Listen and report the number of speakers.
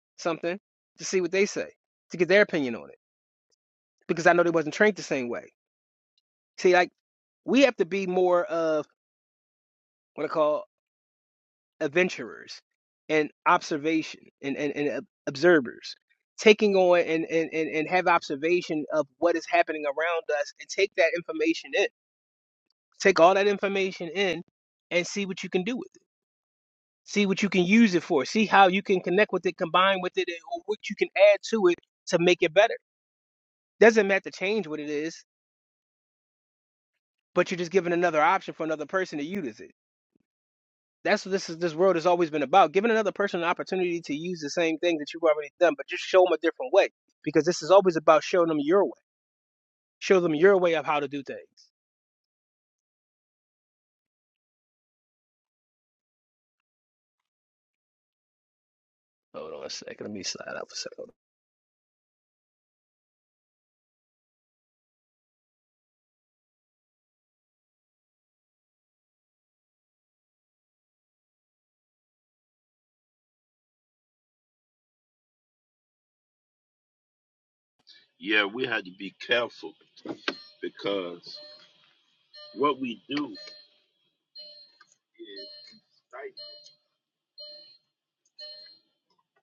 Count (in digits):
2